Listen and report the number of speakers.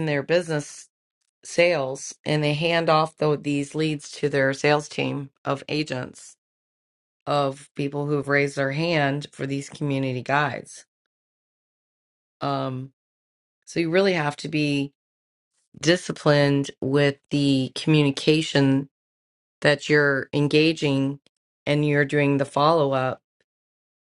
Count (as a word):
one